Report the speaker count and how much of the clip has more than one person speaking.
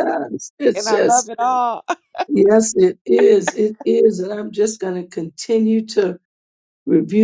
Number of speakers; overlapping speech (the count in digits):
2, about 6%